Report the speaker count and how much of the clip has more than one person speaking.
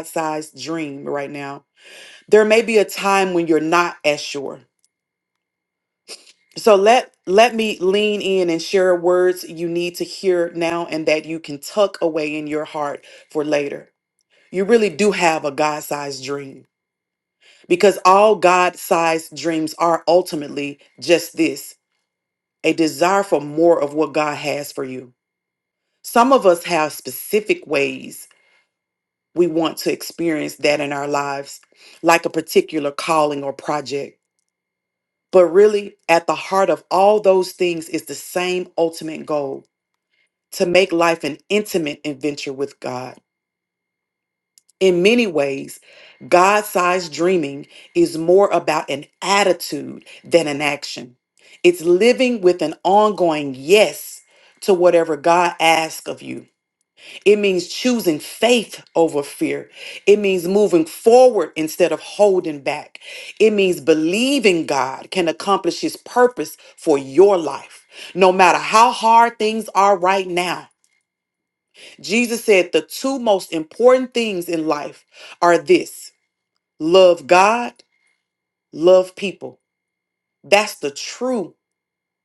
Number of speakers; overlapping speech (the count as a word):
one, no overlap